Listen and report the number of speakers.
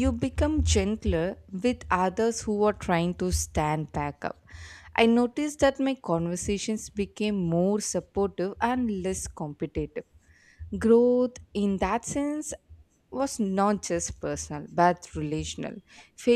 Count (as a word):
one